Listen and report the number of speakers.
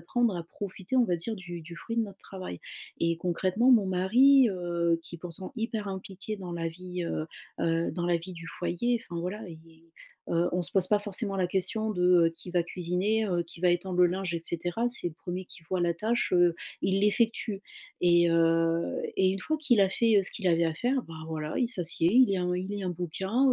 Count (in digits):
1